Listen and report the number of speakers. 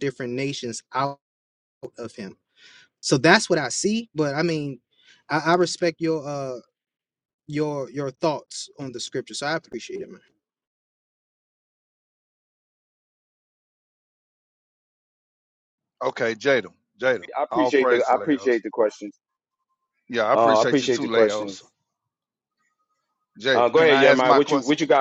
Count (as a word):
three